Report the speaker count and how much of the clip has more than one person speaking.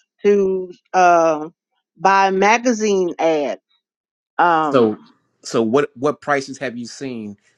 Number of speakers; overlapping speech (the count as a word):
two, about 2%